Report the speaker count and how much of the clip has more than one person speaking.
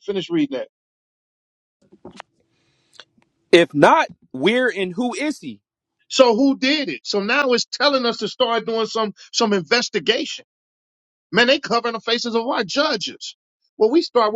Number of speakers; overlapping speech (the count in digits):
2, no overlap